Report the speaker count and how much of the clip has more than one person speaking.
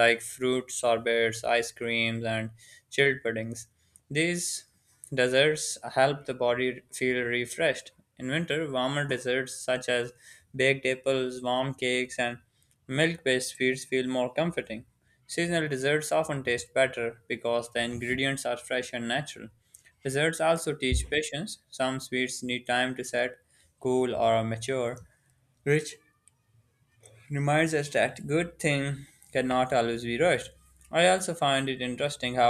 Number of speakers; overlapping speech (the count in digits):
1, no overlap